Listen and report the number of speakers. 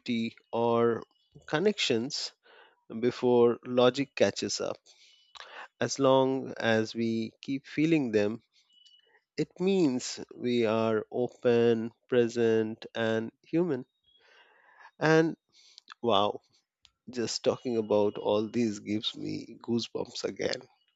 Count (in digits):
1